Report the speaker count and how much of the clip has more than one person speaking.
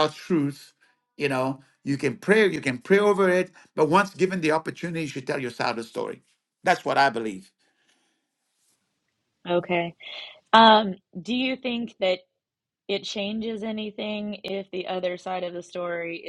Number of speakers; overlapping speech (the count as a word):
two, no overlap